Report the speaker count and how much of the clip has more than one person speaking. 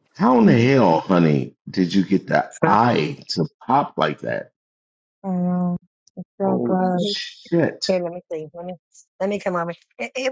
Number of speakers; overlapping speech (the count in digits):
3, about 9%